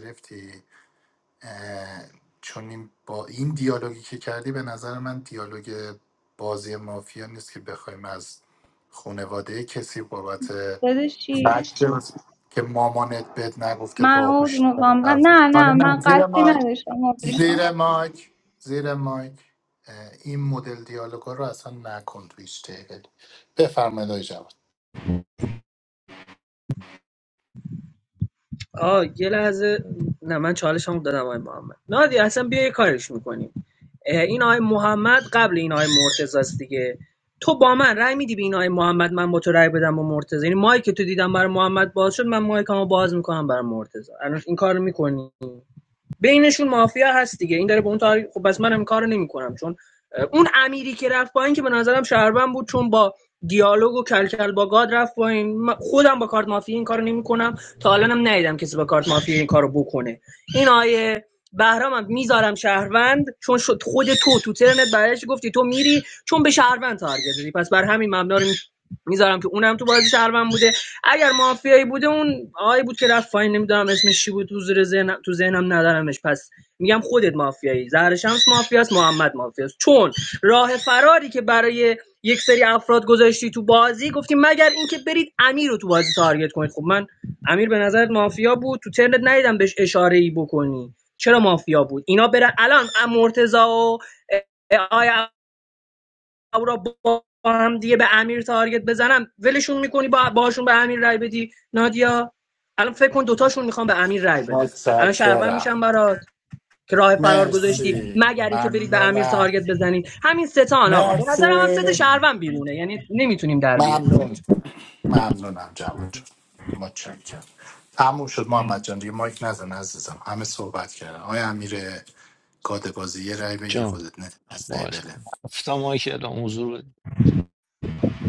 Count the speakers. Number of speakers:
four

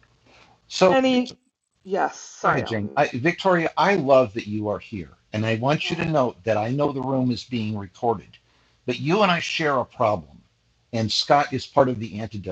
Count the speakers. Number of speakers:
two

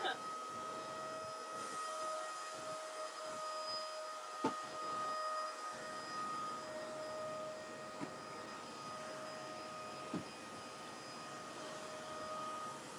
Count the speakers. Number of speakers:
zero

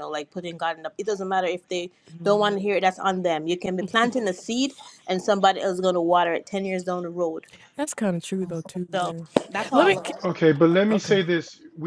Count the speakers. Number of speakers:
three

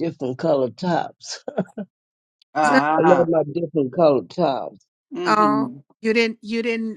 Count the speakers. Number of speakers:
three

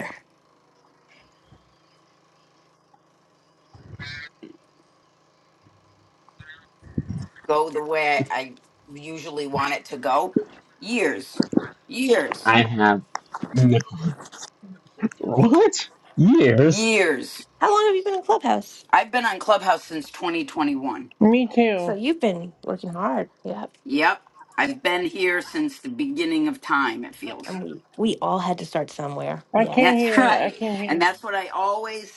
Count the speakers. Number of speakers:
four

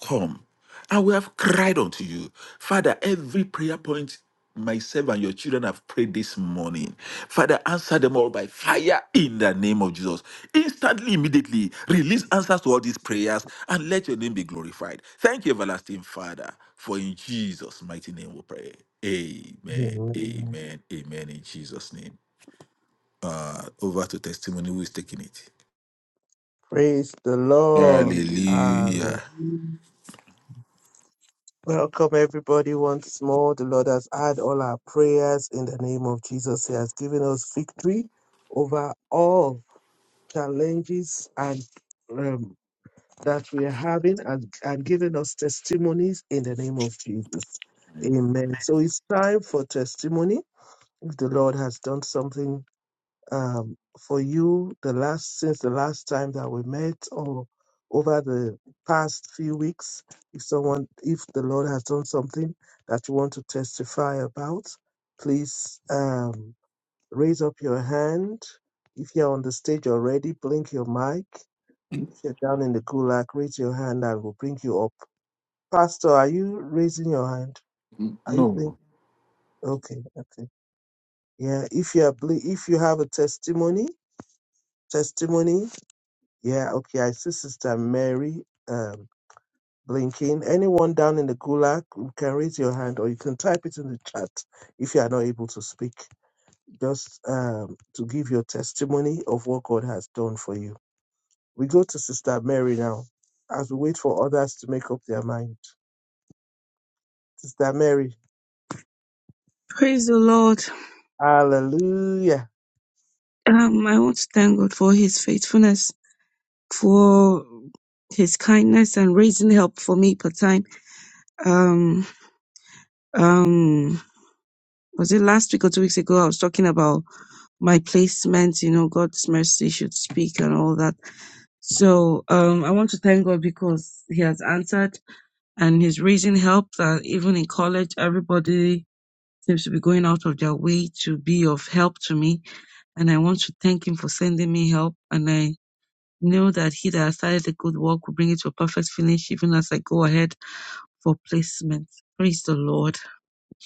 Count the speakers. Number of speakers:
three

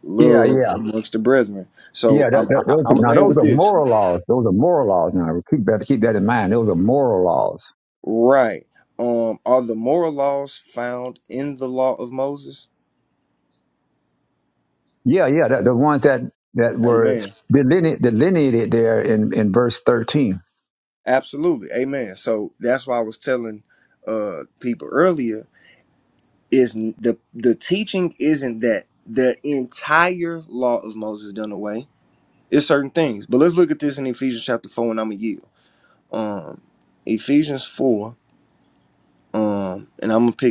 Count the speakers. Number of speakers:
two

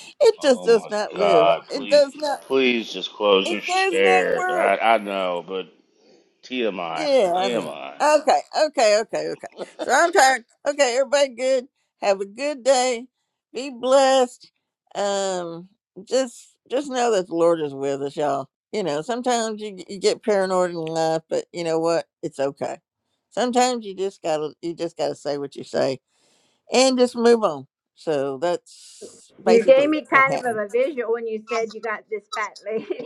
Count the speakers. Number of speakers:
three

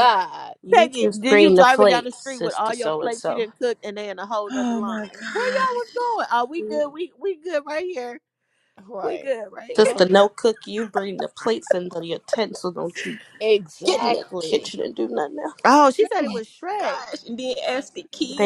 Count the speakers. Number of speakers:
four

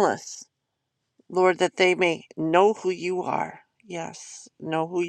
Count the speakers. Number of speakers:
one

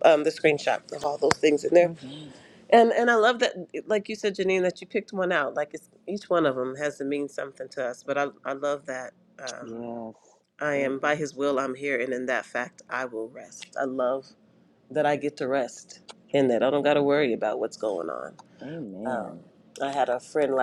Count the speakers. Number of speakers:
two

